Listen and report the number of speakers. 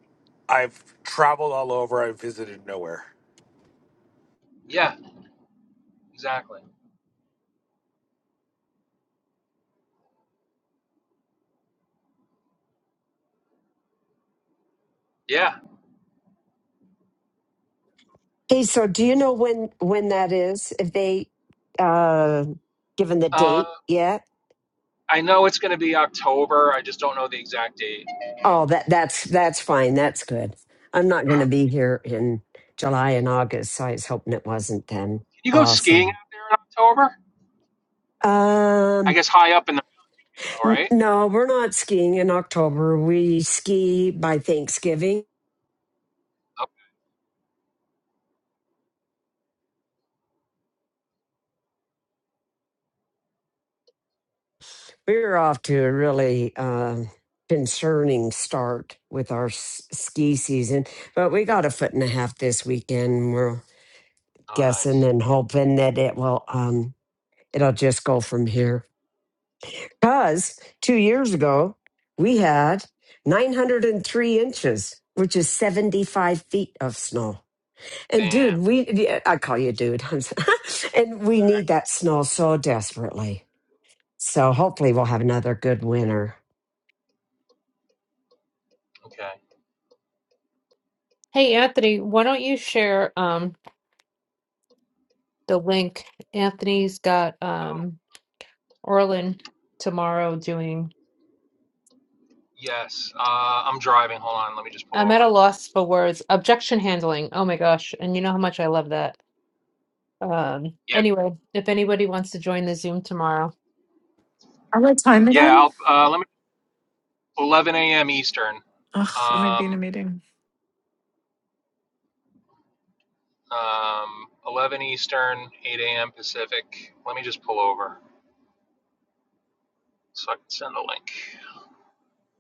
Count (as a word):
five